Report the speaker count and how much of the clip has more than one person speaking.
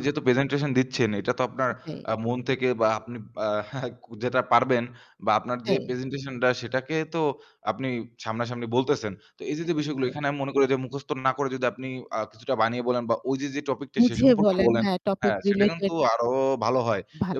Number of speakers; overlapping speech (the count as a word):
two, about 15%